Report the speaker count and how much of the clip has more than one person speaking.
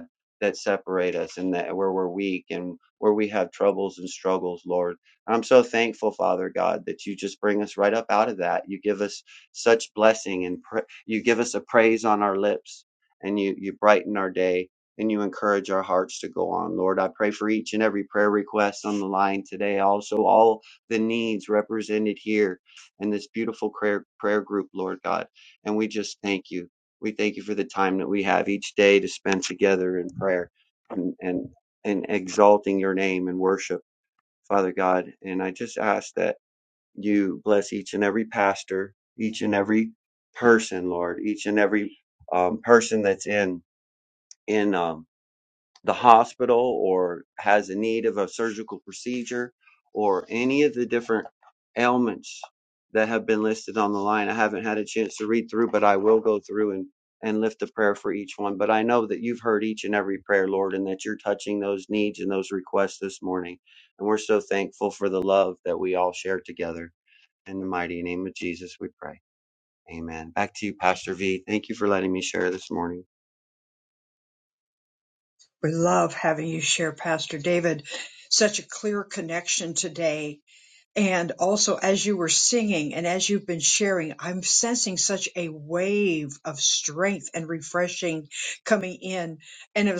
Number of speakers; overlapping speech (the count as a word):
two, no overlap